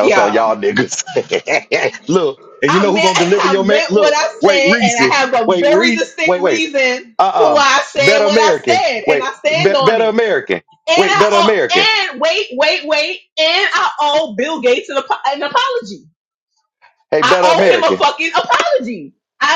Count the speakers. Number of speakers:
2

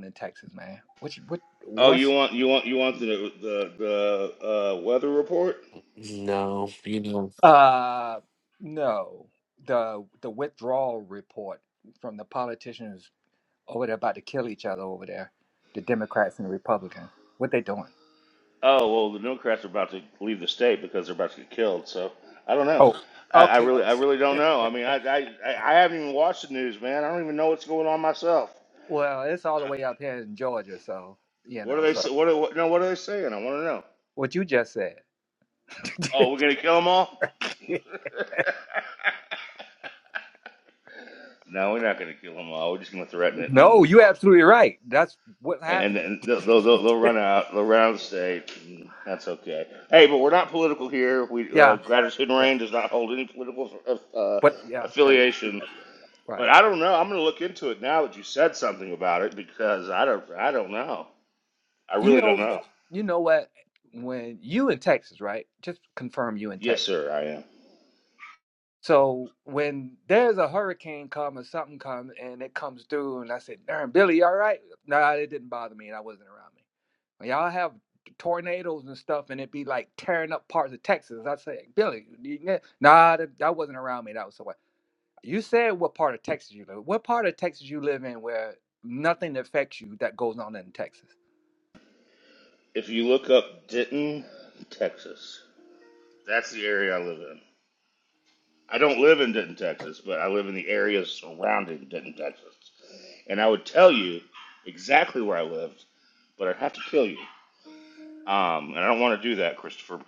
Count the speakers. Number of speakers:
3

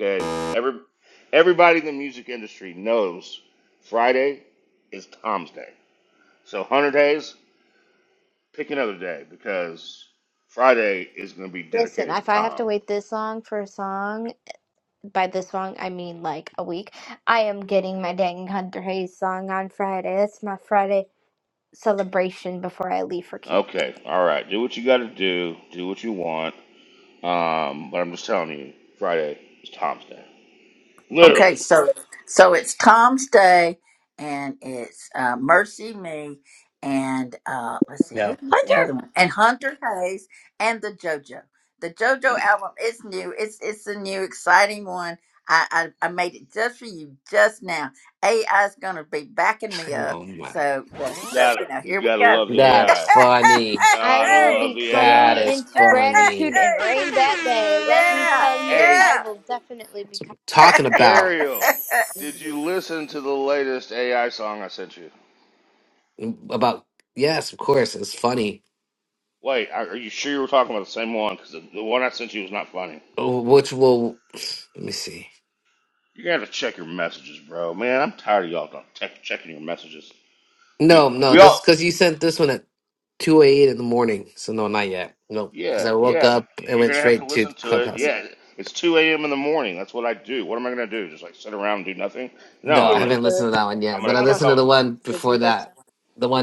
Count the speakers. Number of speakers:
4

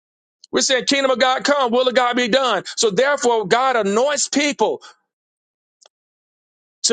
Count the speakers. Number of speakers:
1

